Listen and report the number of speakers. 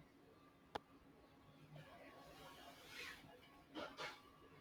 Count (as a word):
zero